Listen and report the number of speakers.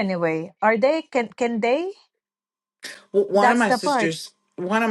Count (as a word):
two